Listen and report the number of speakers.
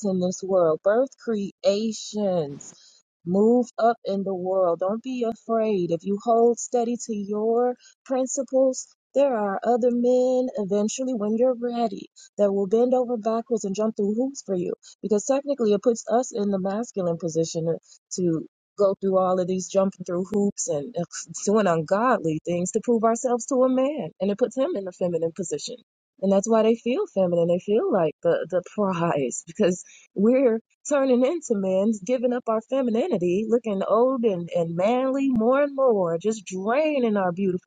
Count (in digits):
1